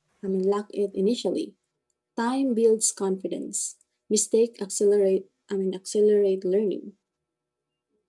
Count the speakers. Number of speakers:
1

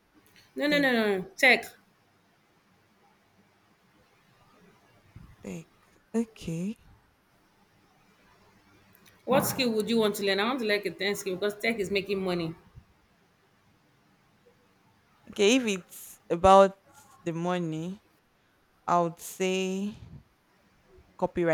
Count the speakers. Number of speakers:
2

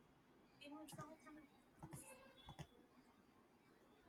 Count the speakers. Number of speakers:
0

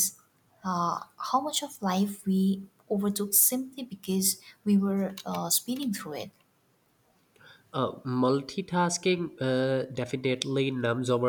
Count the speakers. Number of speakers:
2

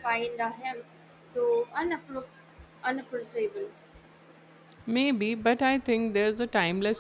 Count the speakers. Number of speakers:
2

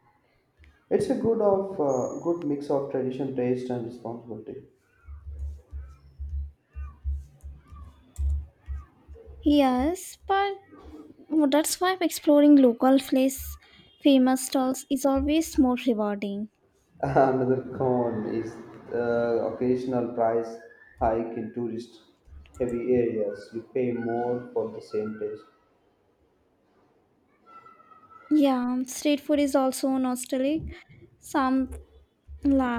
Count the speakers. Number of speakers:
2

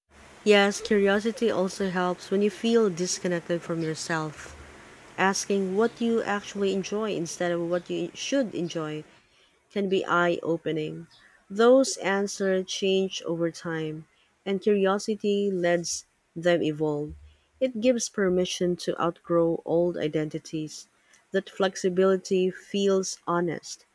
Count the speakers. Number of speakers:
1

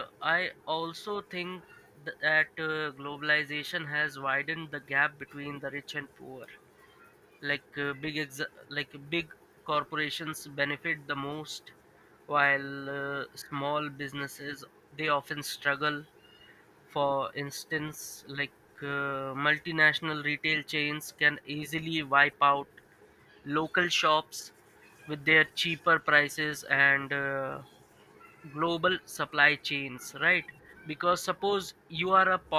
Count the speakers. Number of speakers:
1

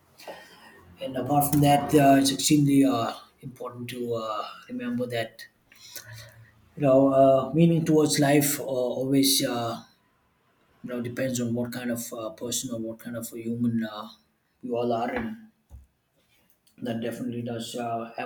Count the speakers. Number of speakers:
1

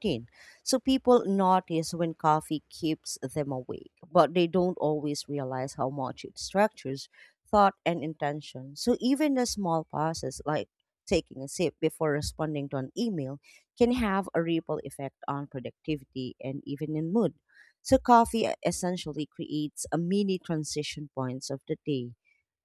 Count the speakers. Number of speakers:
1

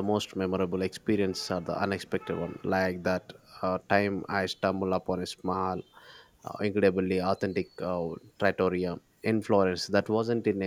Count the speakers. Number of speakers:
1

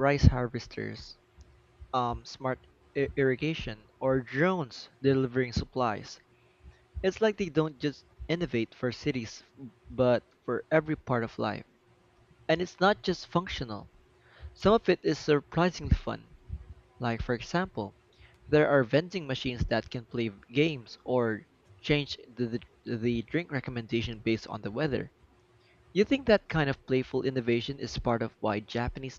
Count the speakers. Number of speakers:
1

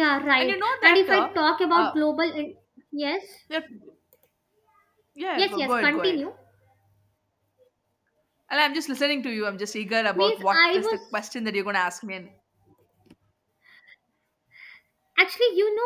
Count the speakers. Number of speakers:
2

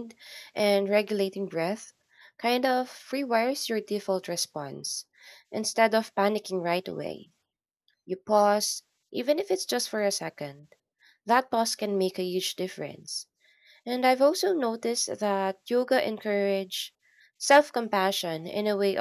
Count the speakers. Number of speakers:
1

